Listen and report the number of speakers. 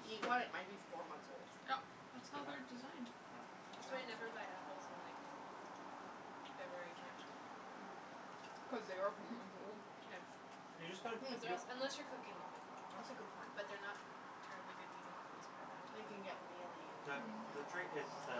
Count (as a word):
four